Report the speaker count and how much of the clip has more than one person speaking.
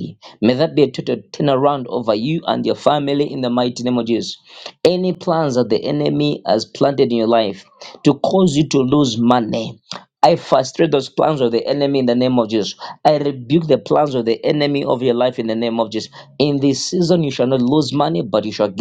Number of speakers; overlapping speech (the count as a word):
one, no overlap